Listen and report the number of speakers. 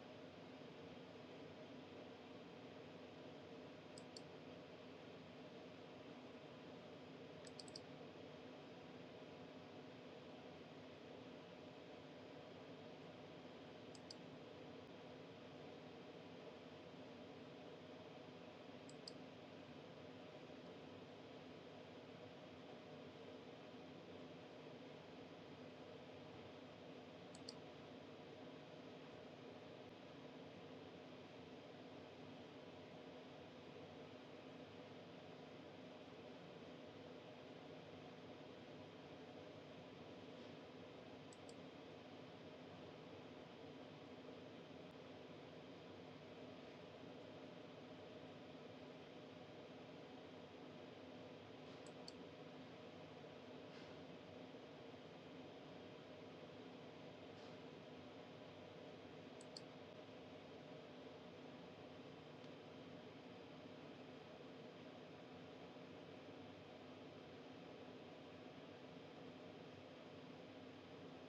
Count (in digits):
0